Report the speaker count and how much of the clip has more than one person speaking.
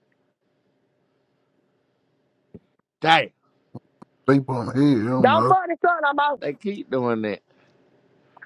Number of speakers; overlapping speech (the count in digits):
3, about 4%